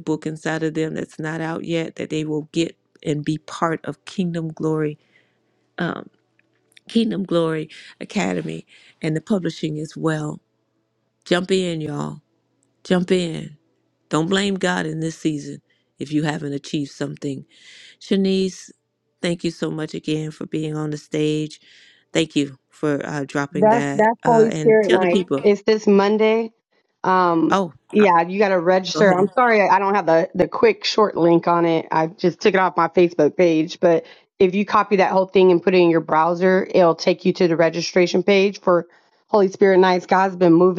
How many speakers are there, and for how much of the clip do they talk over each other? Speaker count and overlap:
two, about 6%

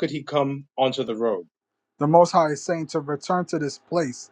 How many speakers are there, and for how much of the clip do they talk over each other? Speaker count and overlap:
two, no overlap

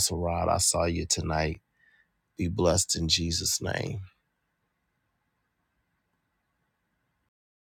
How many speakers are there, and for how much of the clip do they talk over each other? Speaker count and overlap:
one, no overlap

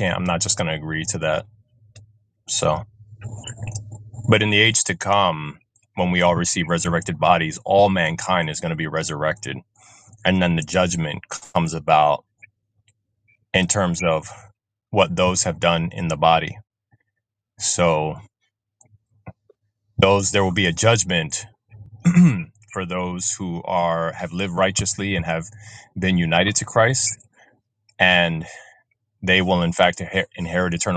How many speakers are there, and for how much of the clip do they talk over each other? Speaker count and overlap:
one, no overlap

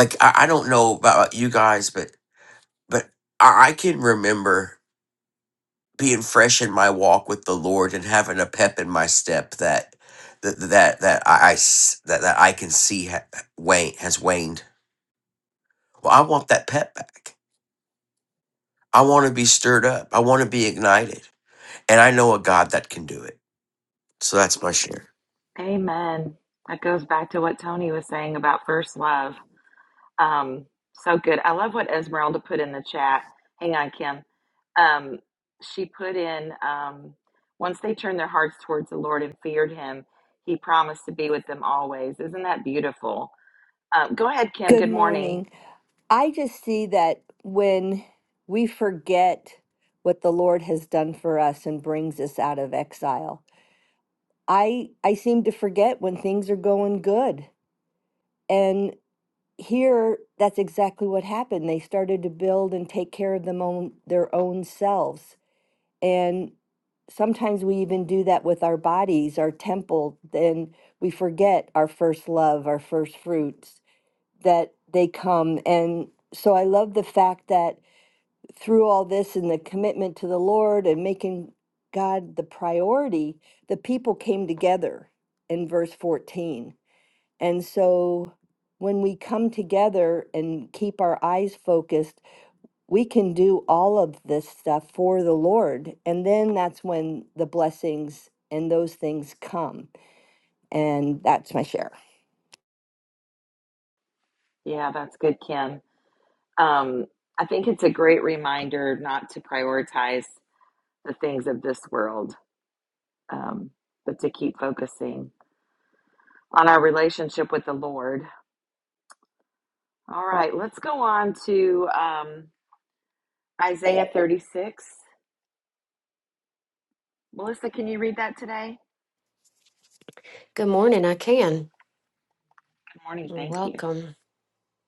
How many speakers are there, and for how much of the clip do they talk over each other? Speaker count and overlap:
four, about 1%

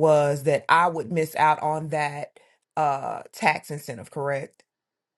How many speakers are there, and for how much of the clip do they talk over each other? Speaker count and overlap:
one, no overlap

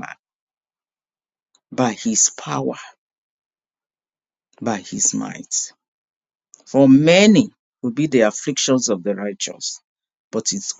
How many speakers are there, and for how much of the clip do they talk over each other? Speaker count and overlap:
one, no overlap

